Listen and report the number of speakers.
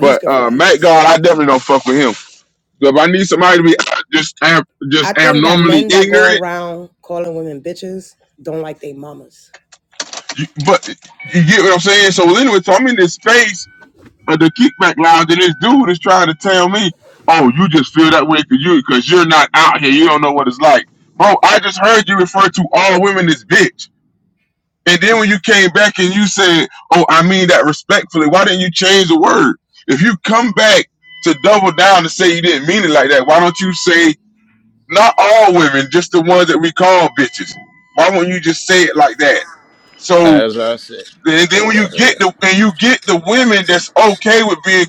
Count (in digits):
3